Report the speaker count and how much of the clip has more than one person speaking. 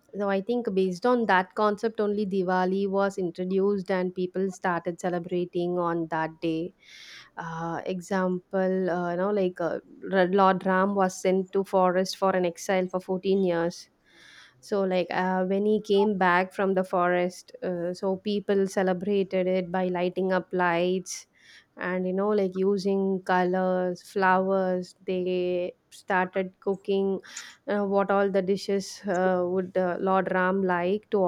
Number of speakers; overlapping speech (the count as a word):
one, no overlap